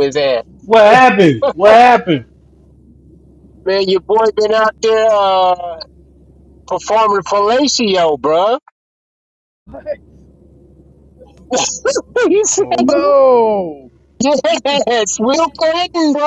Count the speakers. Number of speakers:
3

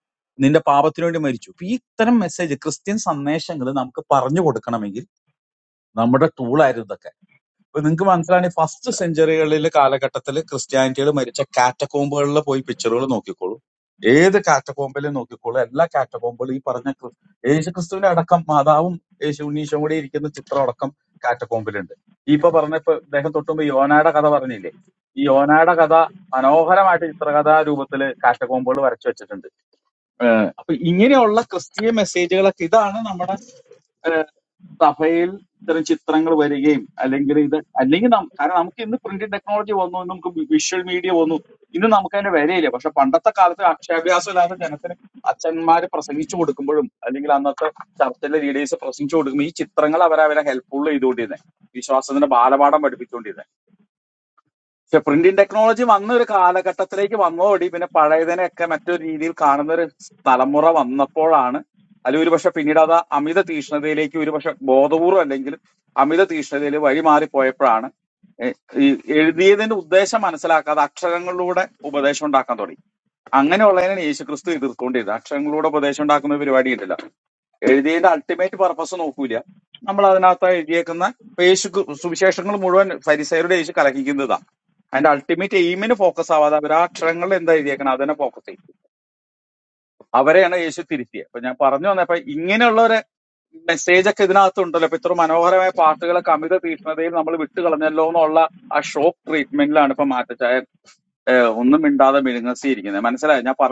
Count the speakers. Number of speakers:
1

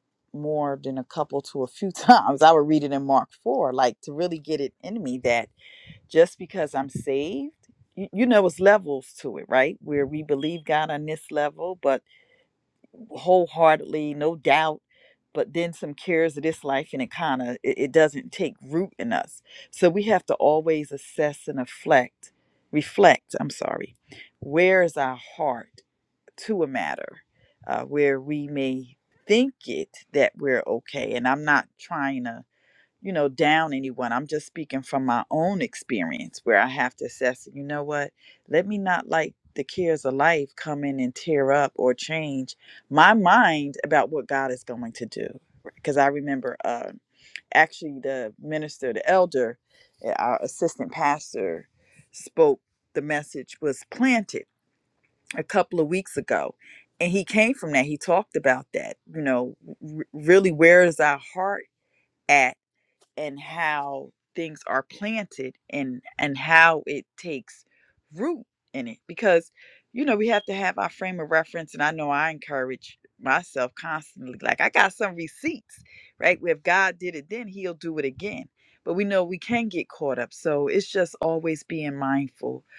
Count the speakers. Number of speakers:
1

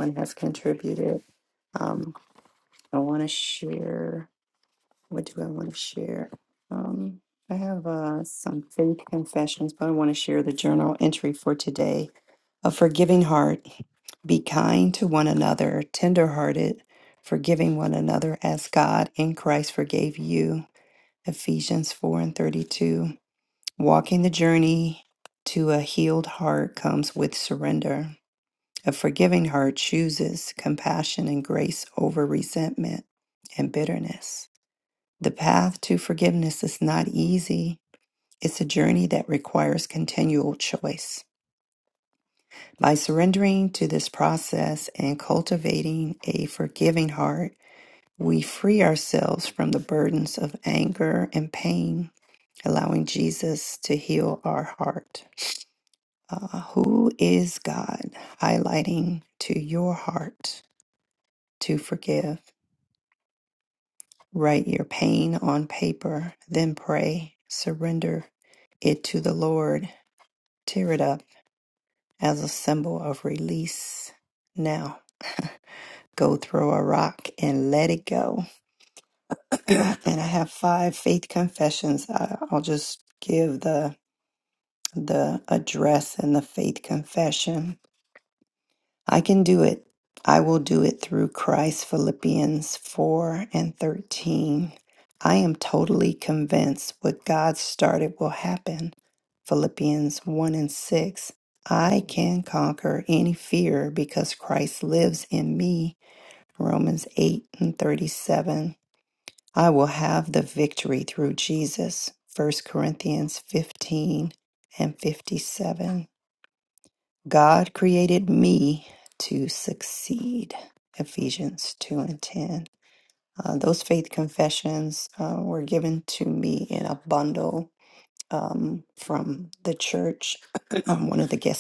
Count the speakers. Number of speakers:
1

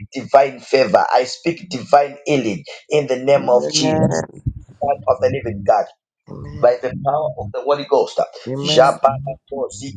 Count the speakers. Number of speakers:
2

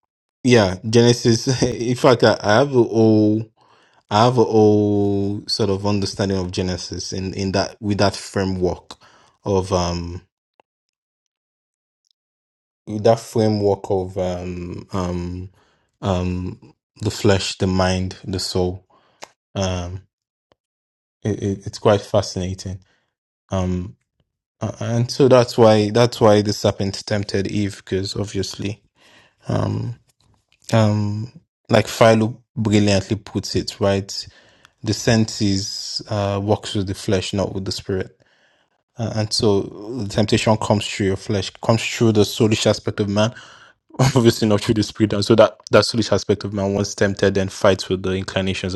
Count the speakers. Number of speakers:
1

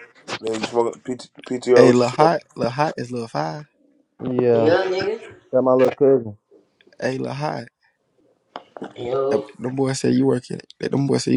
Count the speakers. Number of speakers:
4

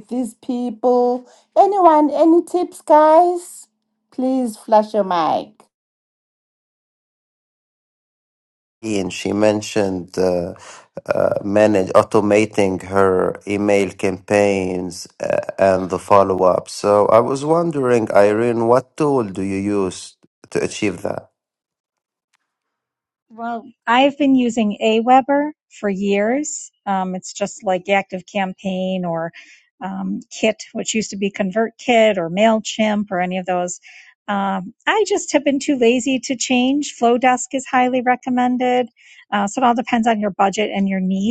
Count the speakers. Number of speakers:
3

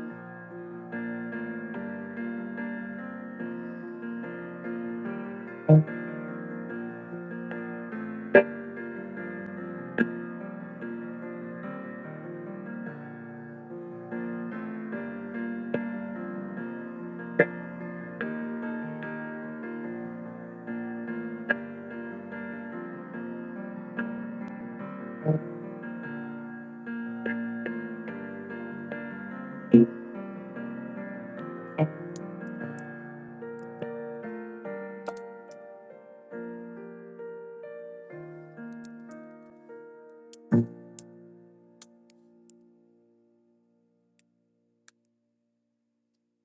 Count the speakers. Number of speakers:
0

